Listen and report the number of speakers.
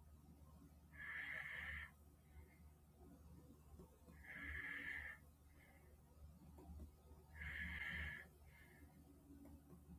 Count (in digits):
0